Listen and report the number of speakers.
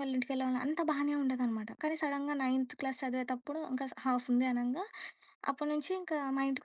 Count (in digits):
1